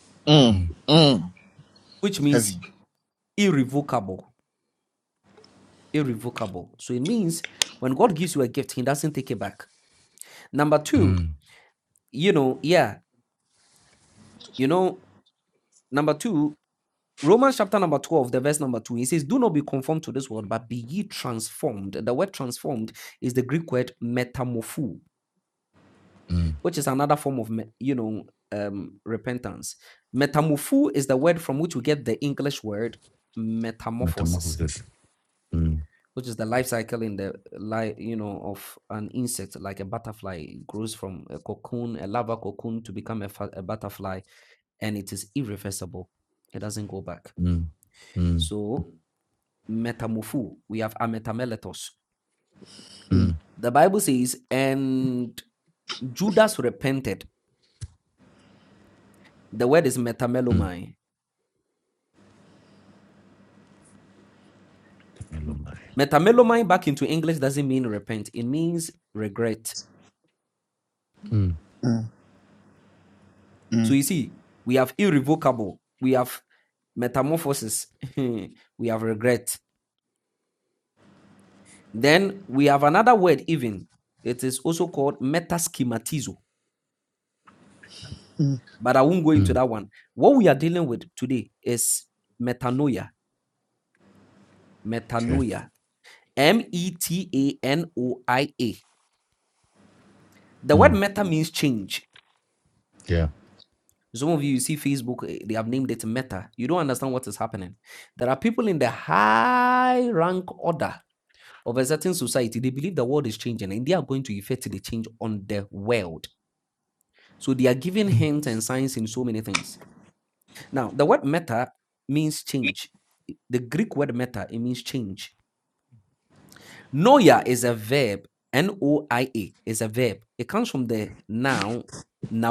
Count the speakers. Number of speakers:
3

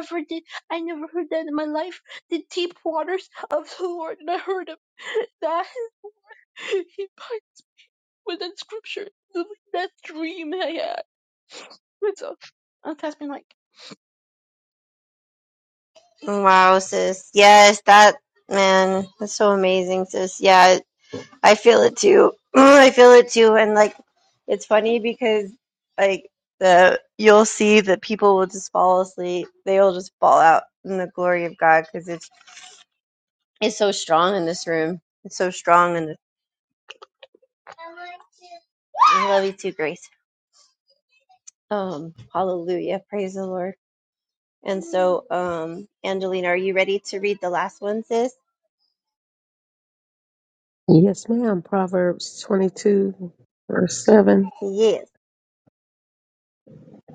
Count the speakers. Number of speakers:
3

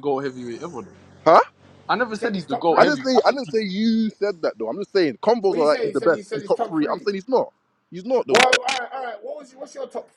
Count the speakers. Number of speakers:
3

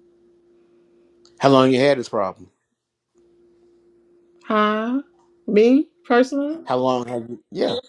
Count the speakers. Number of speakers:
2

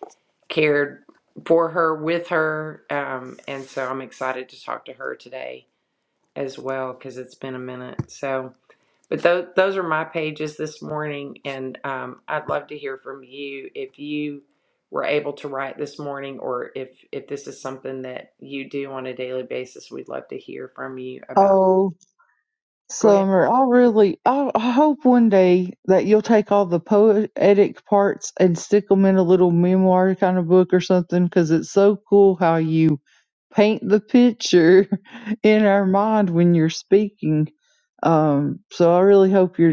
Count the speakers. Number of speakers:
2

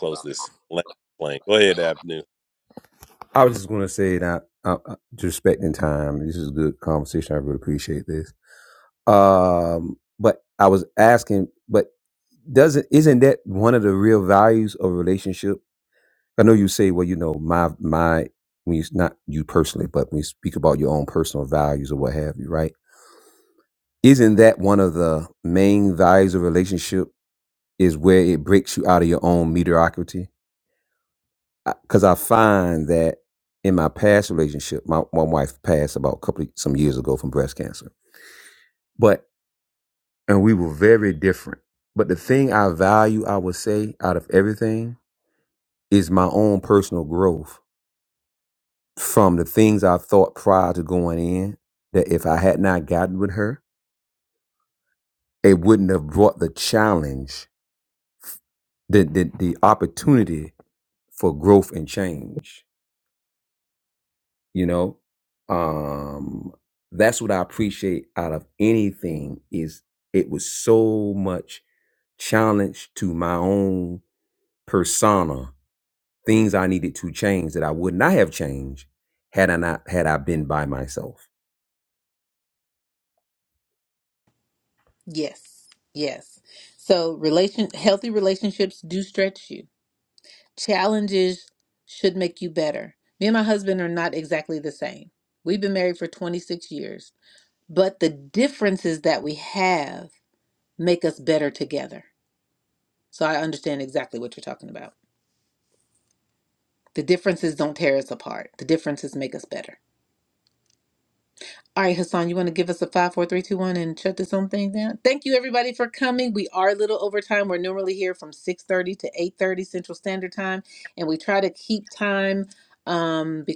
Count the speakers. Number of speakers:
3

